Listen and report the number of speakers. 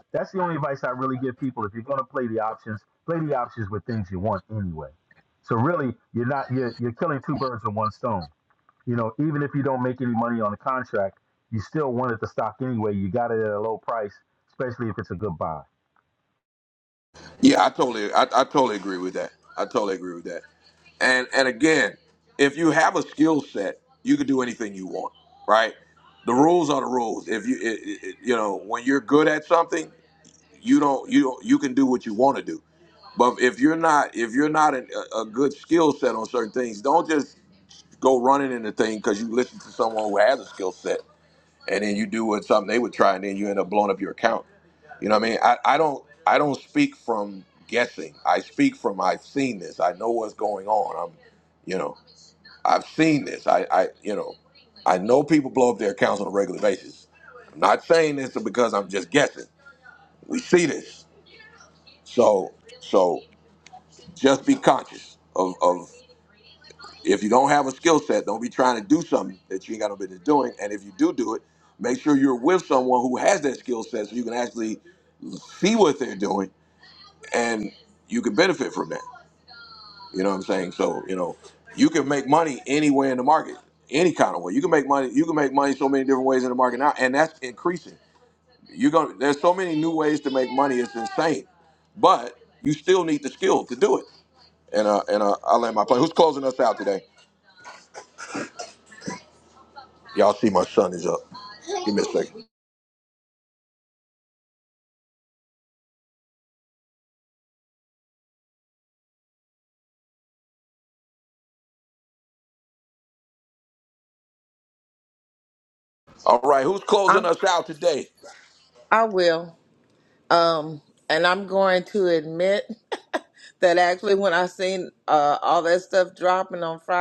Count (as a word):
three